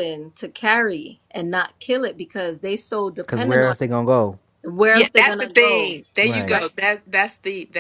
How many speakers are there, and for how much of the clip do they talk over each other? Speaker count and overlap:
three, about 25%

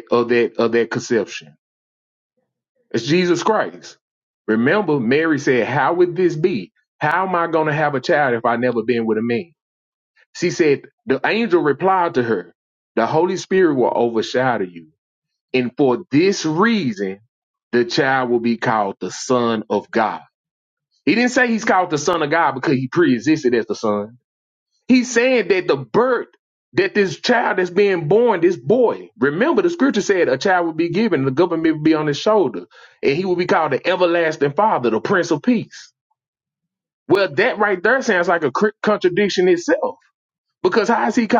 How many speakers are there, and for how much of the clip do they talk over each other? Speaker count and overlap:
one, no overlap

